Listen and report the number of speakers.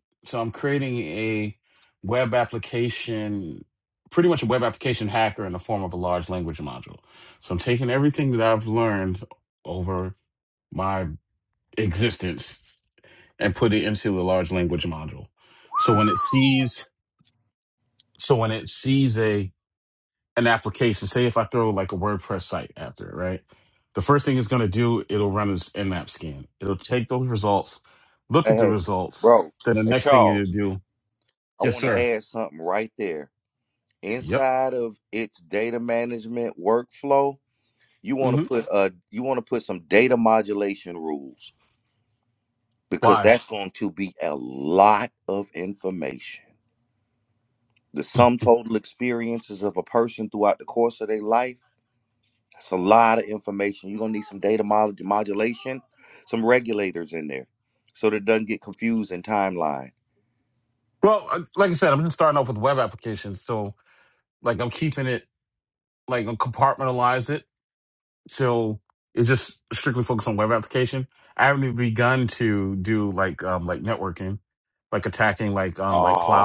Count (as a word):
two